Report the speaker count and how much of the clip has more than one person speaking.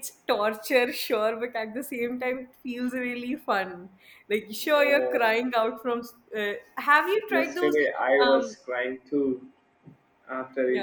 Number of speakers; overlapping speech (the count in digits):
2, about 15%